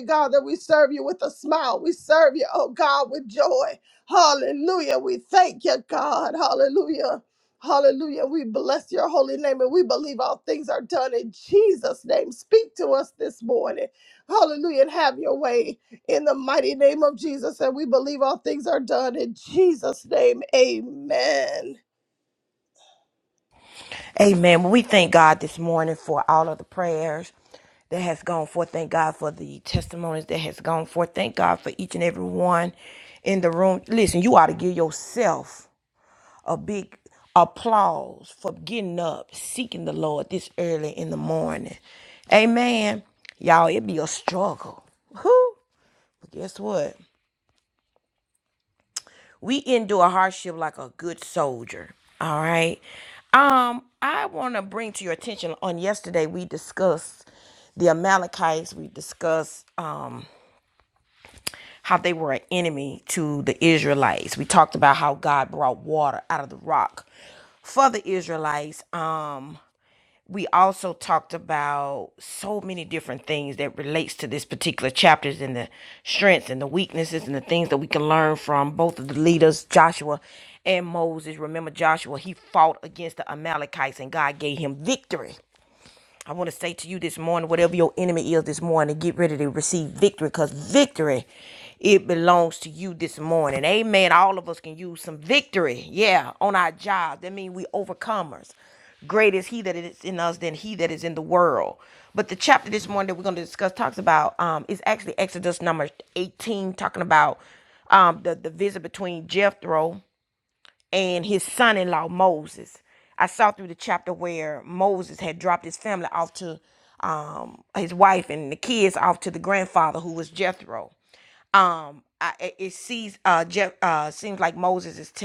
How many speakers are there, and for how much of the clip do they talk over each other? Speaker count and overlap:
two, no overlap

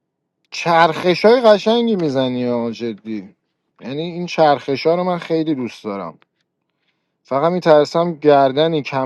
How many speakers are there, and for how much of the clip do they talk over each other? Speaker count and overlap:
one, no overlap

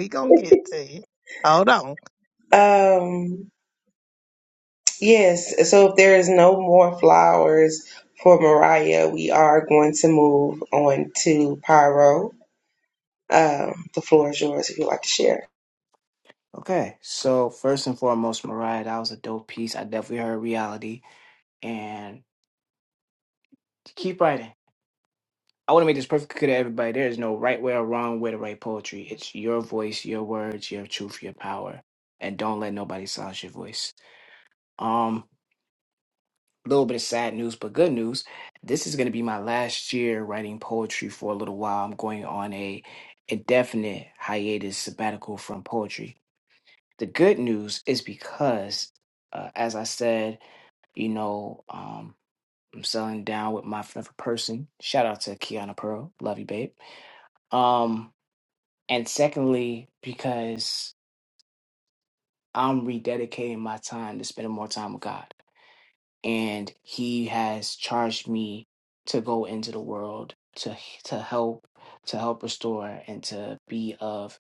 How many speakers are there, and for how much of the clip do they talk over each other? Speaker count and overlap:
three, no overlap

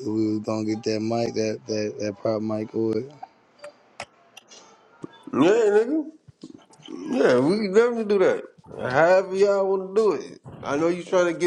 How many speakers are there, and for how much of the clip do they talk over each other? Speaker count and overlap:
two, no overlap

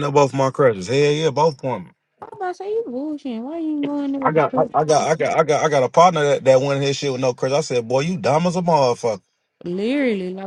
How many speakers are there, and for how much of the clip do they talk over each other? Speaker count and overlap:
two, about 5%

